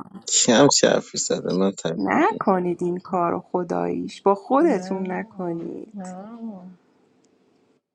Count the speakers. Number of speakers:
3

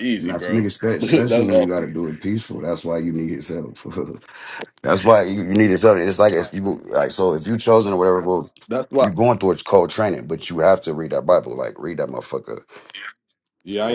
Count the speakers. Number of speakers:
2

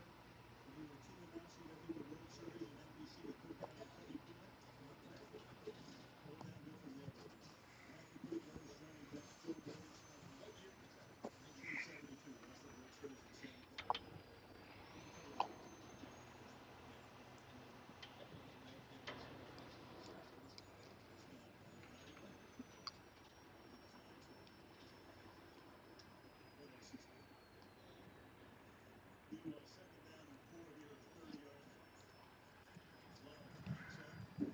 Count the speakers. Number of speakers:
0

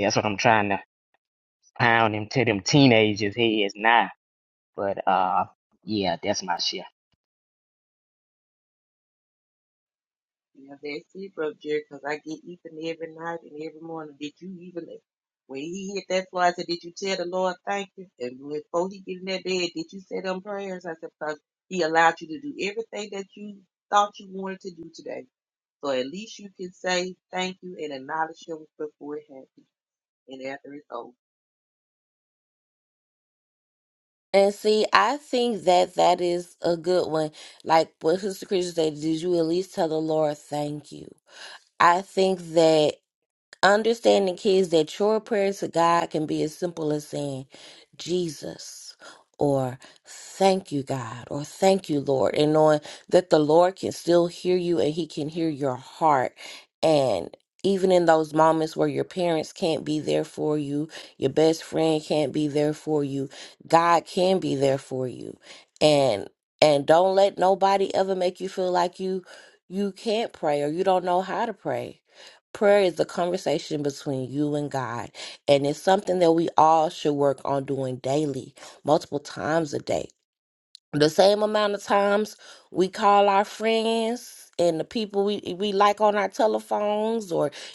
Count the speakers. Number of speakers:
3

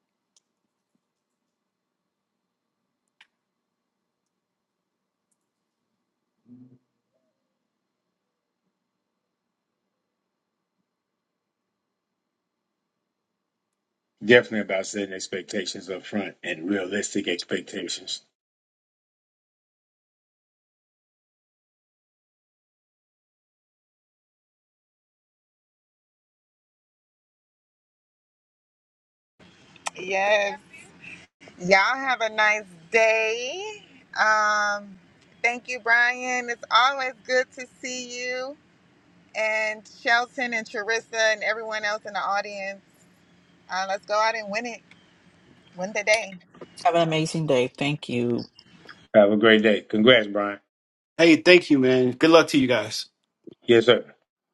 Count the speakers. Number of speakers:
4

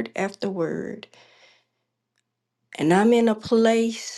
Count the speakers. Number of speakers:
1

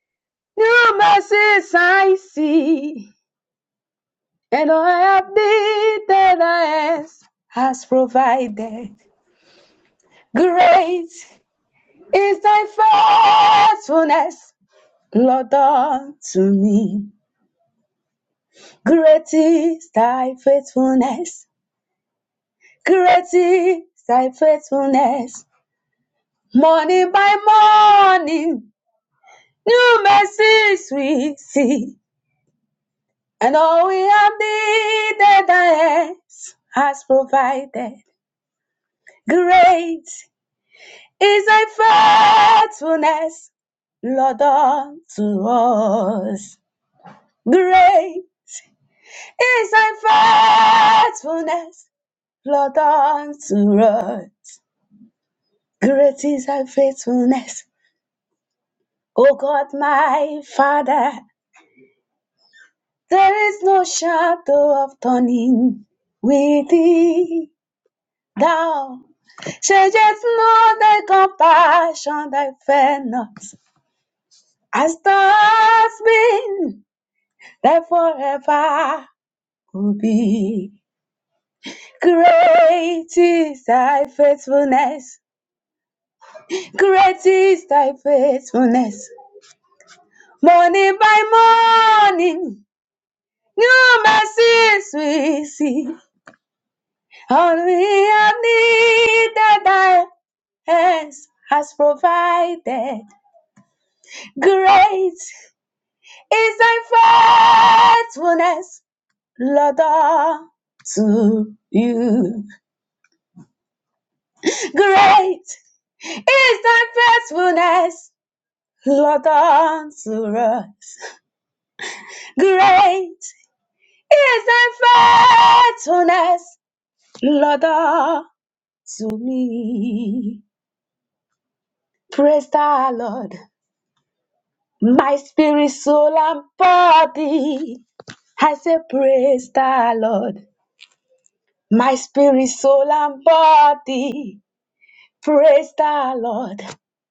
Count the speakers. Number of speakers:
1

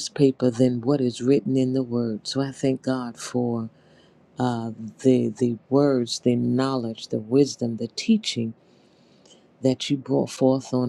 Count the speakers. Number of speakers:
1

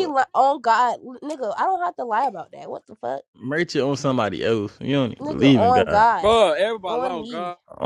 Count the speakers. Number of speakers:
3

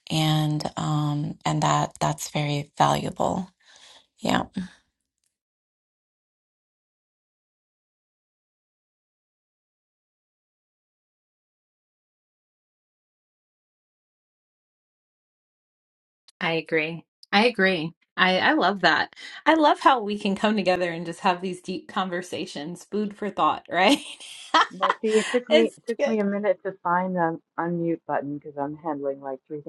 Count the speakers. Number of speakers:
3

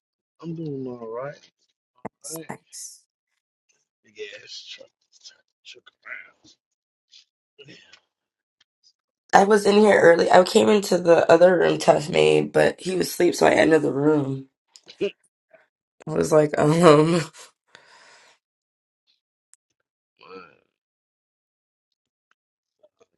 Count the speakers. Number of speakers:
2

